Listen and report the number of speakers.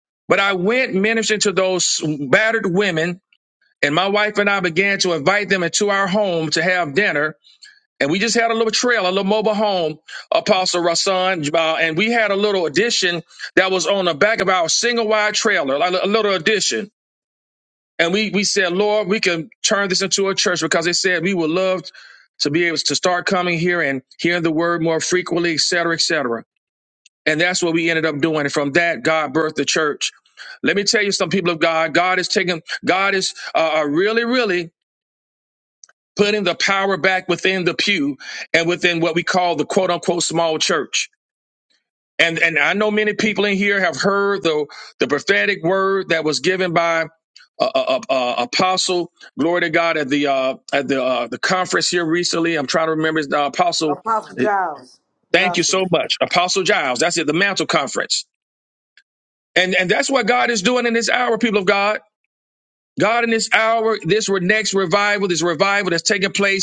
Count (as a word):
two